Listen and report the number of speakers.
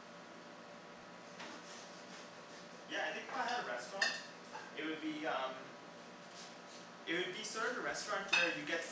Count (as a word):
one